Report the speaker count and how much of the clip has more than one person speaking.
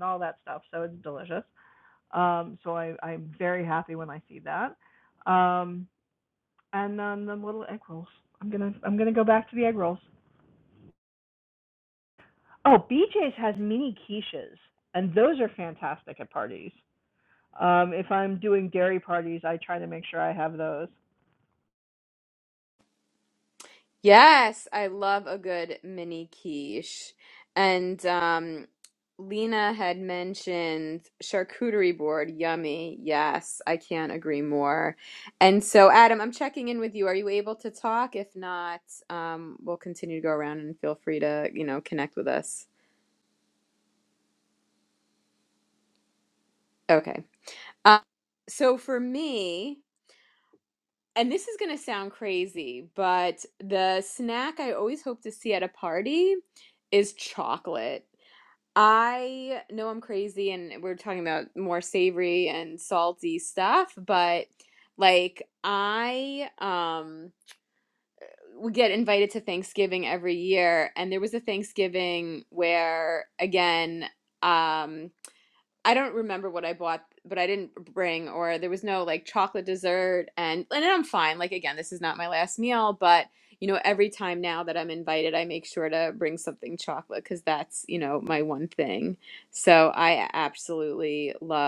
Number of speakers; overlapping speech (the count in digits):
2, no overlap